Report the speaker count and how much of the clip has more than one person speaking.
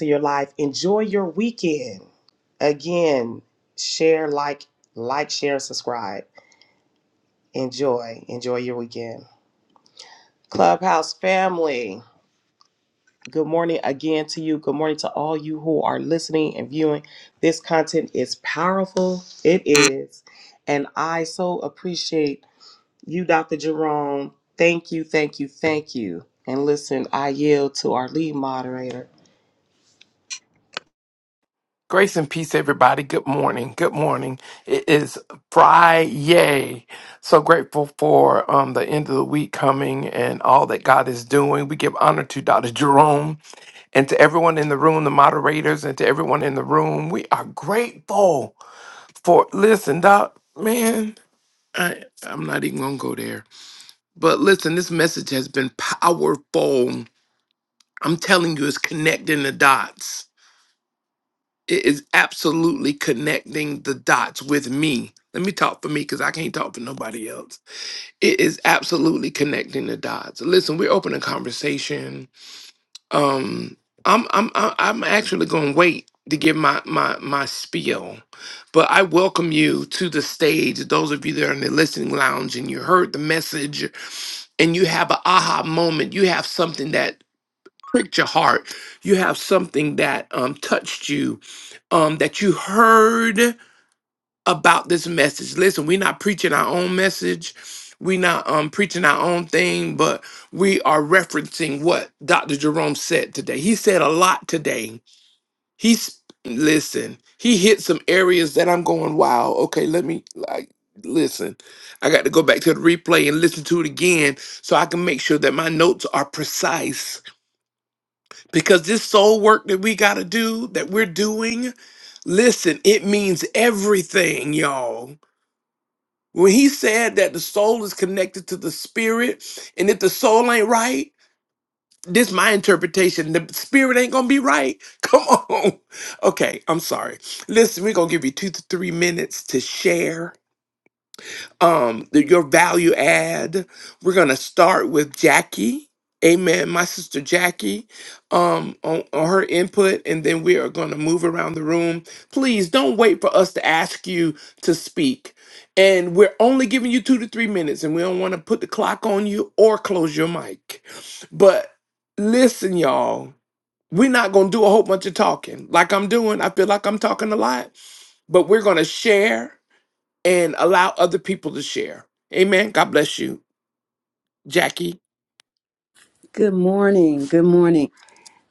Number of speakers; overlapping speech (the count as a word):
three, no overlap